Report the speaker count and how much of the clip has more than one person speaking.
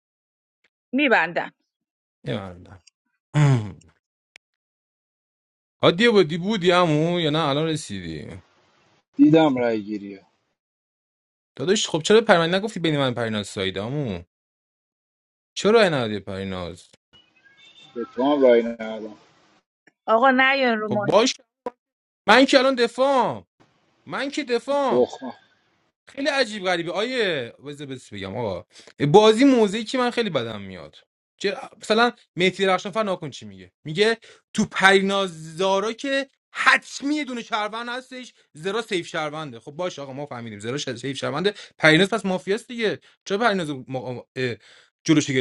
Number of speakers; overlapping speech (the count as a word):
three, about 1%